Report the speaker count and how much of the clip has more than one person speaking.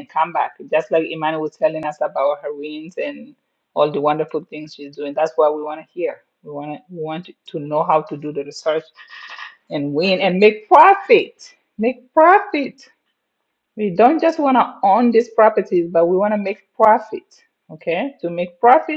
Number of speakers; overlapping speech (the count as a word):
one, no overlap